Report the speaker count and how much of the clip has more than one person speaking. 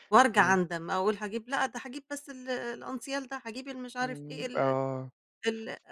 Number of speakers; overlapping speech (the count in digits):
2, about 14%